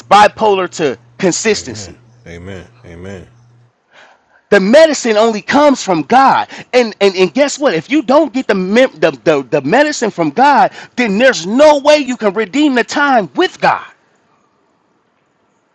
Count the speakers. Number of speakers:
2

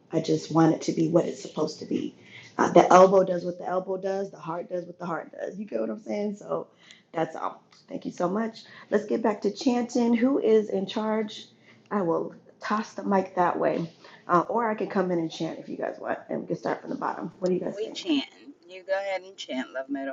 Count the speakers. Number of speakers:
2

